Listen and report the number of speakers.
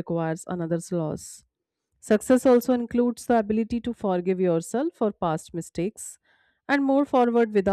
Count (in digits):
1